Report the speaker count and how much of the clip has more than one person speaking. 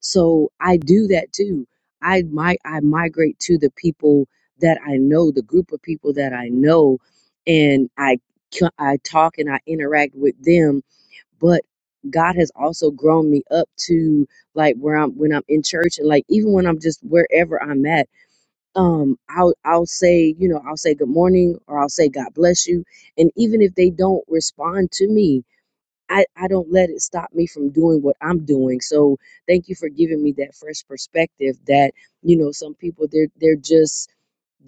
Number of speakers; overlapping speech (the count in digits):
1, no overlap